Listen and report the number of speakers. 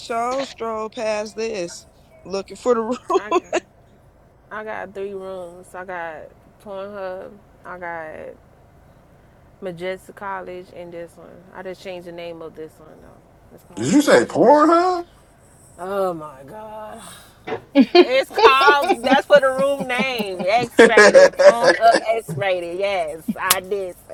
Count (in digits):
3